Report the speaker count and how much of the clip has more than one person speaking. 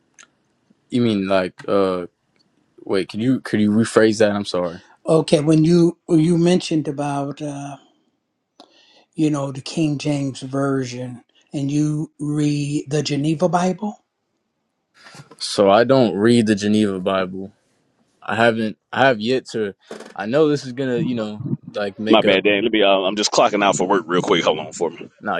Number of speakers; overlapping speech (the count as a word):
three, about 1%